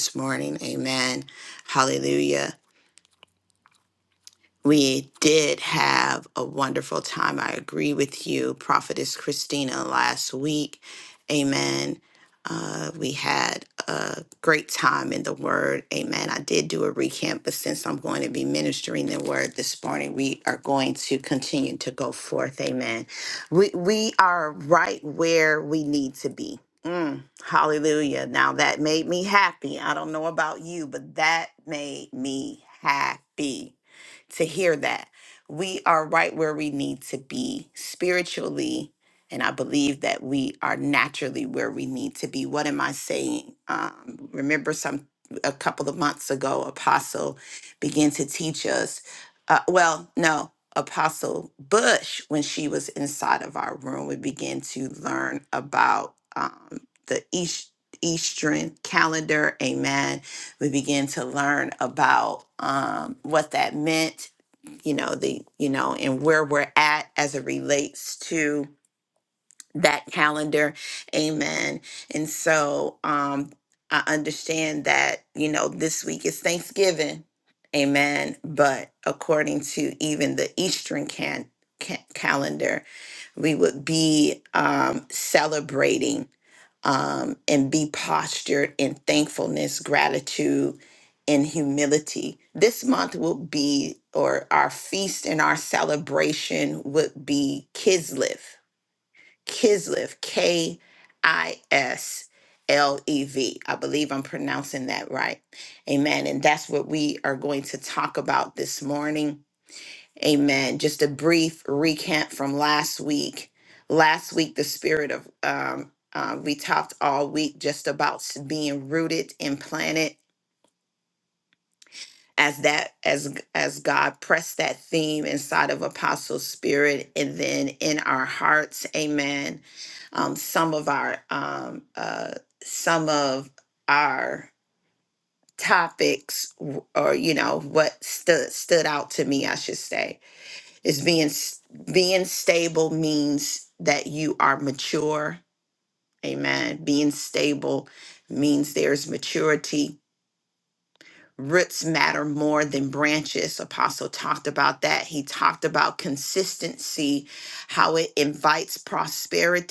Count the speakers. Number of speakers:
1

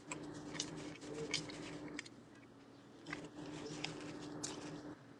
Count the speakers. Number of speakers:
0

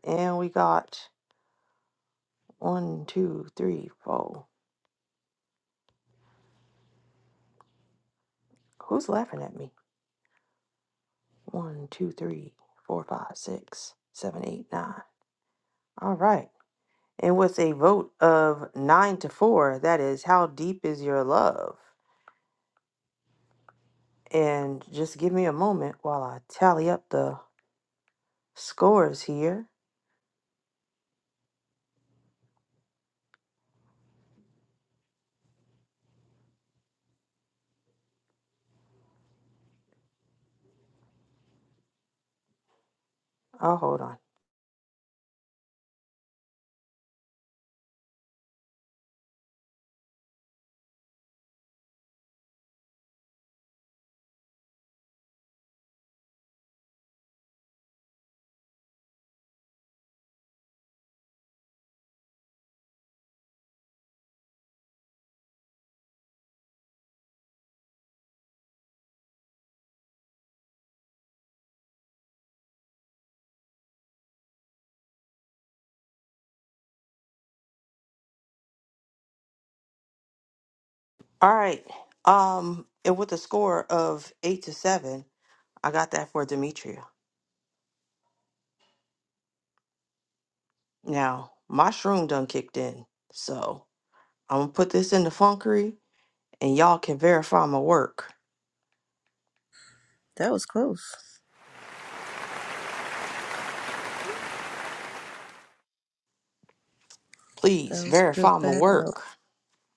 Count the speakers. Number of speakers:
2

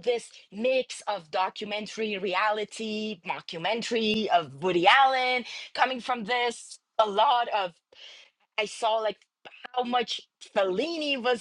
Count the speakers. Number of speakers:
1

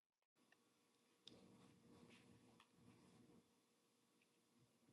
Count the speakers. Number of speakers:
0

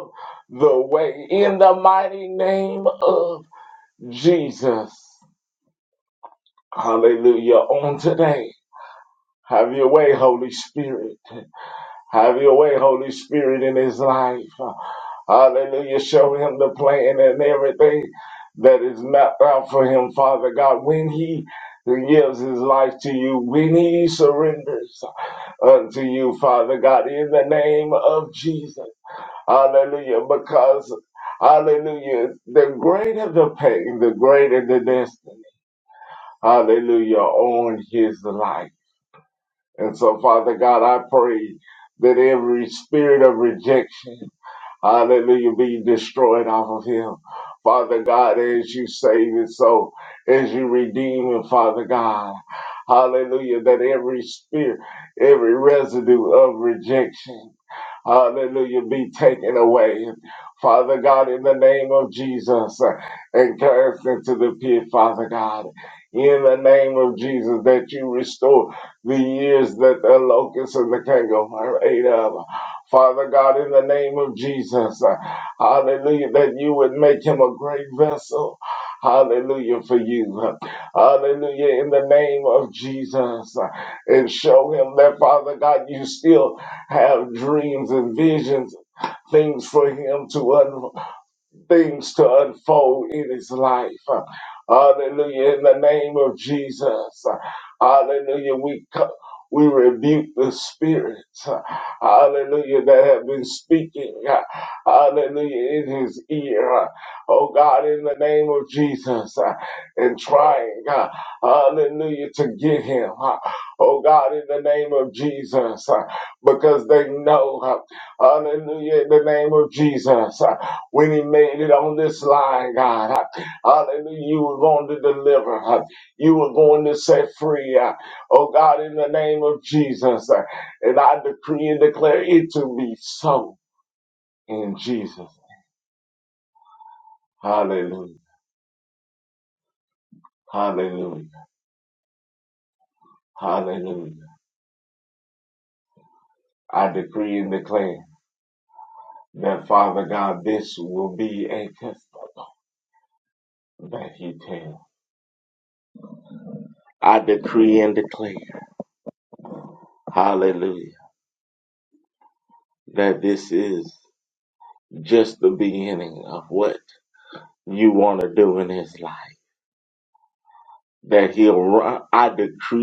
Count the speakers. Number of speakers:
1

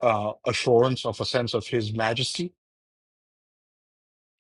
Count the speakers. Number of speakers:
1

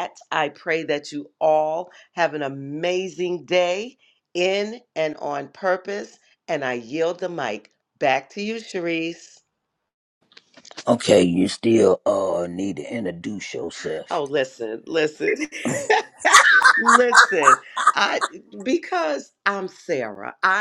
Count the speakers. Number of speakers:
2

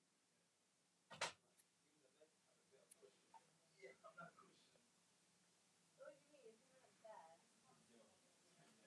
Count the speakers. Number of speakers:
0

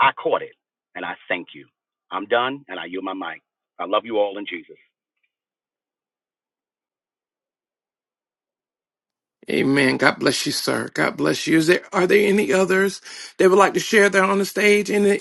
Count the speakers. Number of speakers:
2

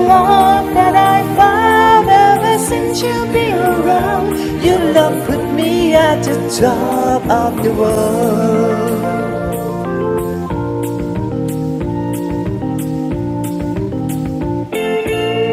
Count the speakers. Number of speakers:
1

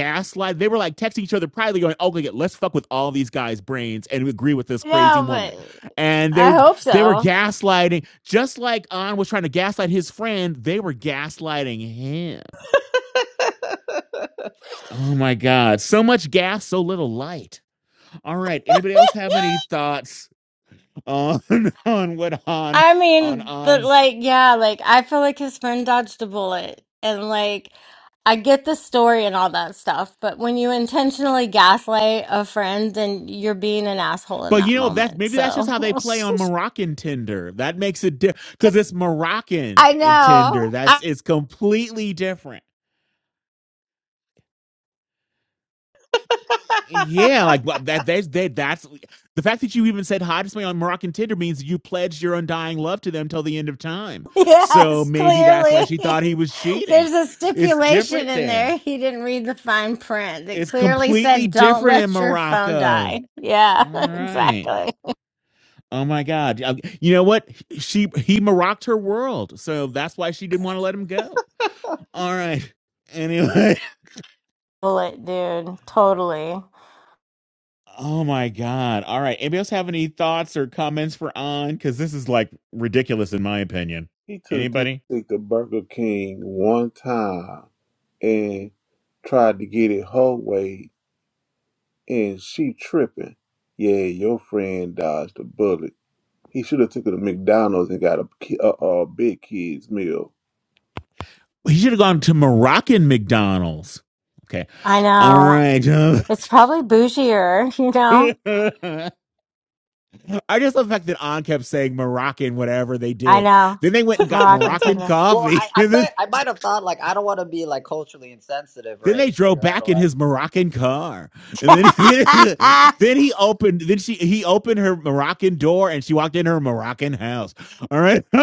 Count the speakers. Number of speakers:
4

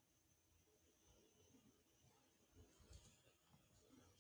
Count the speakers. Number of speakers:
0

